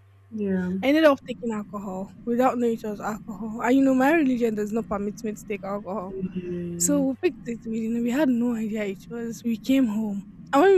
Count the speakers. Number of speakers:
two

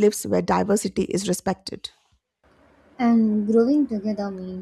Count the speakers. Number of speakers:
two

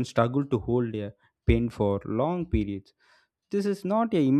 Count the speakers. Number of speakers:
one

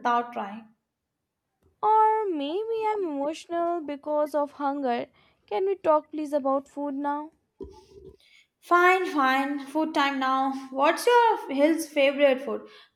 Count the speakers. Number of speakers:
two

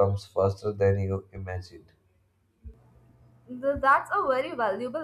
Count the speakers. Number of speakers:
two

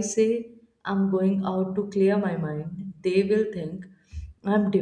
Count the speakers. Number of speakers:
one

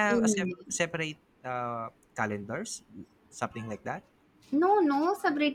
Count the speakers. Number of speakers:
two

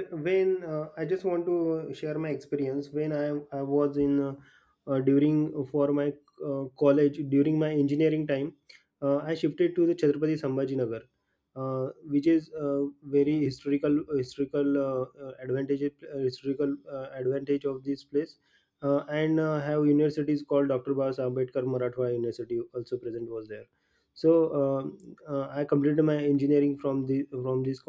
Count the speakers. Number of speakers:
one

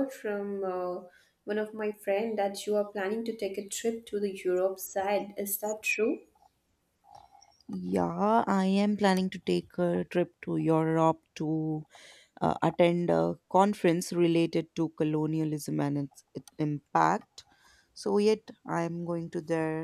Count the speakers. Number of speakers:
two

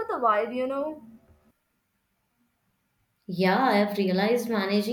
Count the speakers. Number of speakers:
two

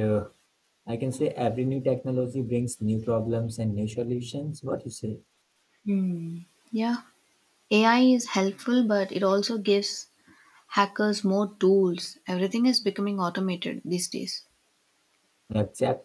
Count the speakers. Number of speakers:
two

